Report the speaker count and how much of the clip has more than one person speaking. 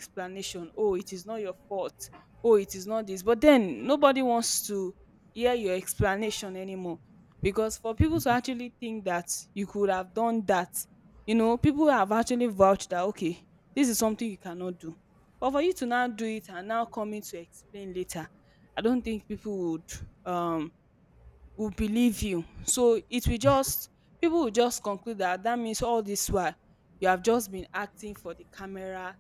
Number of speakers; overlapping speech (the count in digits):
1, no overlap